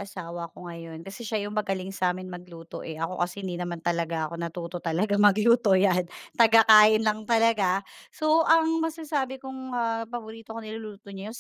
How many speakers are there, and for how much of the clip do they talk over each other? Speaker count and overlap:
1, no overlap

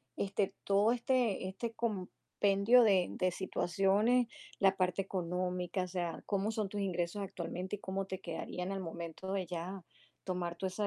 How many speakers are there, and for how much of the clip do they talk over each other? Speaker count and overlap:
1, no overlap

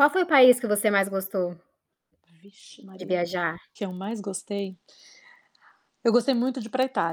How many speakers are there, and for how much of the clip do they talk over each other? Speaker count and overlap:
2, about 2%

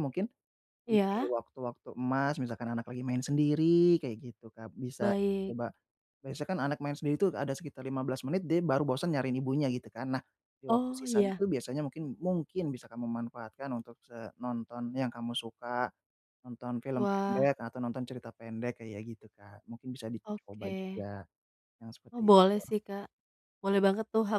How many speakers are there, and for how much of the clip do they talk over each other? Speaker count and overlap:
2, about 13%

